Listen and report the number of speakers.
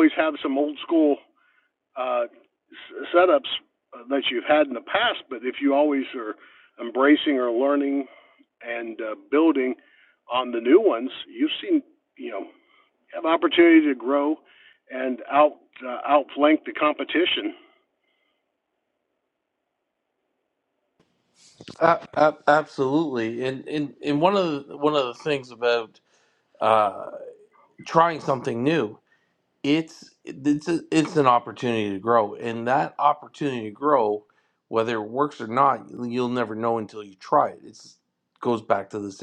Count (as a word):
two